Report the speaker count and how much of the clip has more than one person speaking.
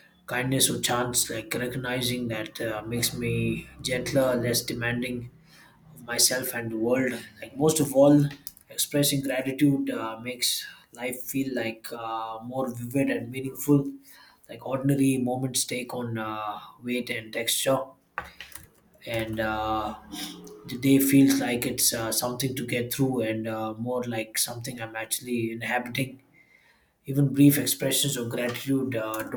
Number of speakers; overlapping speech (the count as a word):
one, no overlap